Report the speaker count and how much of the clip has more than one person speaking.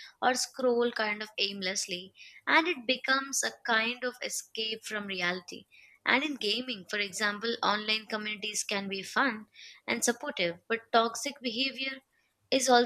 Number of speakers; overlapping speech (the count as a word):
one, no overlap